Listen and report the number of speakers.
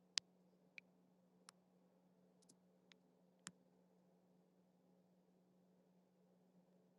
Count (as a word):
zero